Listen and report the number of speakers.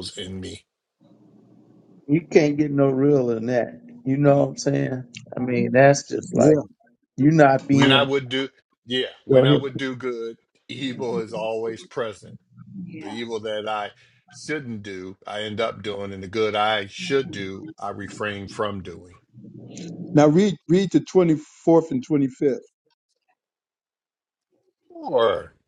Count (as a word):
three